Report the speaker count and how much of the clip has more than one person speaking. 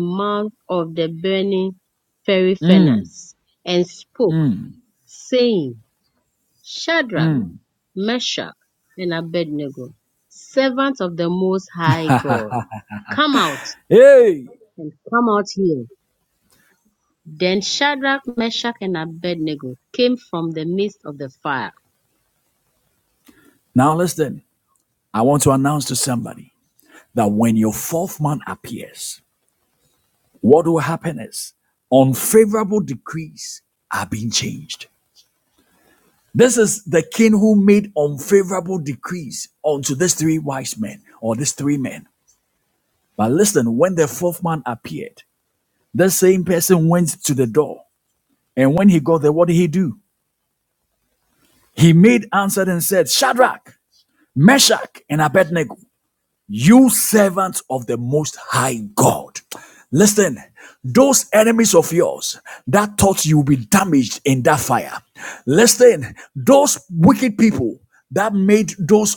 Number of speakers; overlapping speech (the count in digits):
2, about 1%